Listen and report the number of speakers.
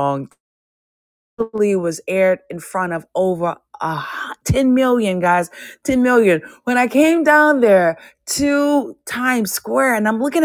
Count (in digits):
1